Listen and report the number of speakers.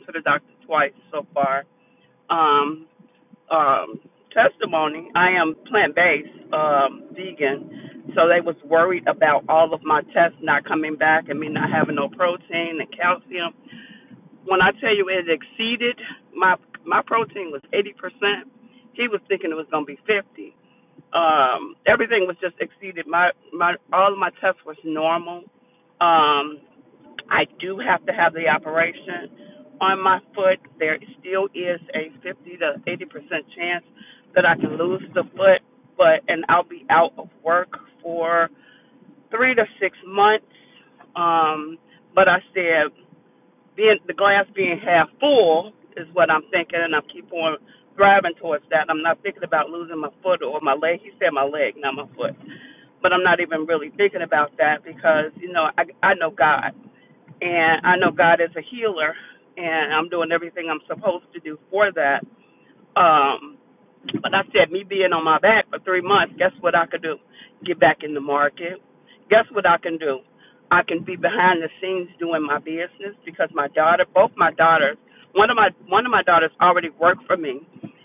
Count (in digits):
1